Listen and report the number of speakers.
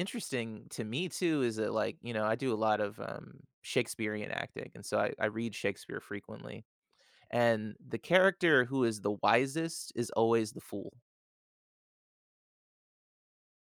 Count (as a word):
one